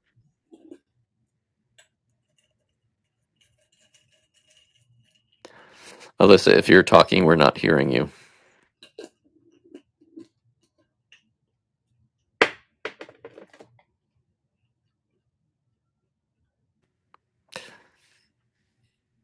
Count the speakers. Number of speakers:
1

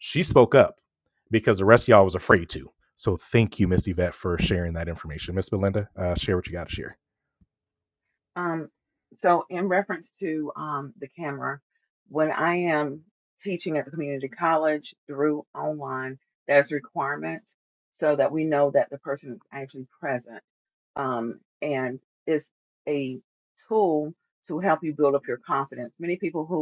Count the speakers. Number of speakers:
2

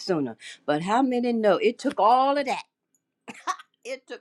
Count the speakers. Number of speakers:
1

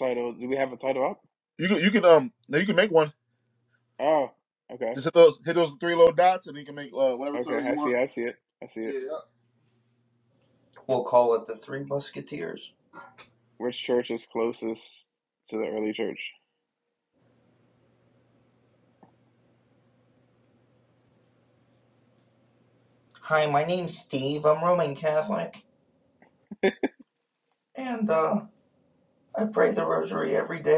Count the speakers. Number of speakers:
3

